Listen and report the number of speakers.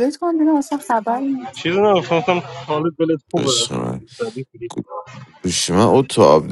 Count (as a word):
three